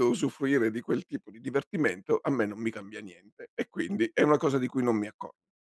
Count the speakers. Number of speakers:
1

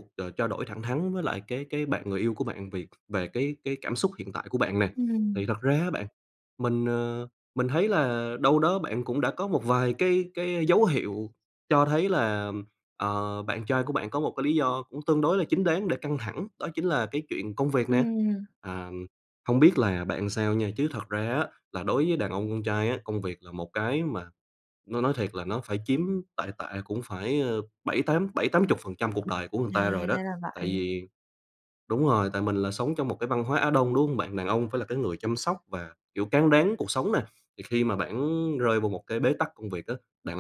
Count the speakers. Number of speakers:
2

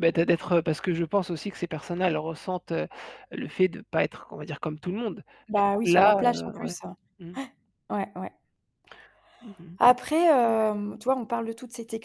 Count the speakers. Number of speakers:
2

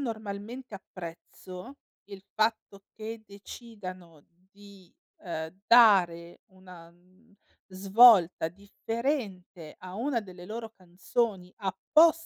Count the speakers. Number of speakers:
1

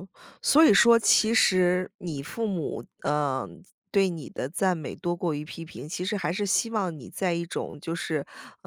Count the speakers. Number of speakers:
1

